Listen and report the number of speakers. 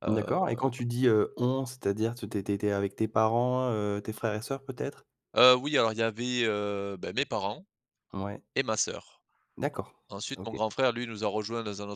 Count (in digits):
2